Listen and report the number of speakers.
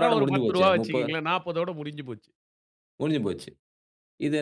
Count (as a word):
two